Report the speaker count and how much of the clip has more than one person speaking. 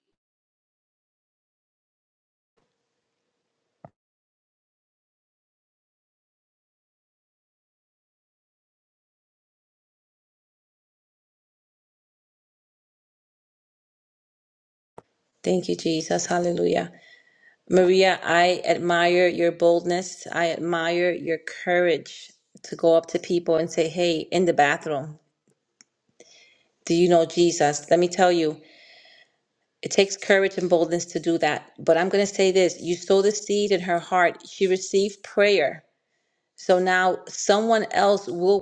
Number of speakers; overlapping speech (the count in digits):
1, no overlap